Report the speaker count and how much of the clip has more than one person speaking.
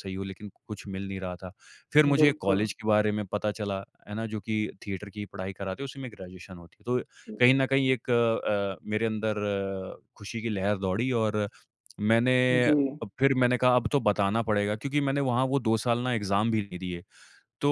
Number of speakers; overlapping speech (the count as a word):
two, about 5%